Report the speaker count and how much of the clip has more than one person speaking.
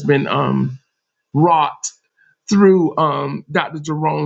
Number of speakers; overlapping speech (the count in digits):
1, no overlap